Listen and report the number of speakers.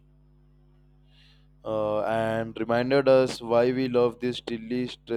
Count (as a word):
one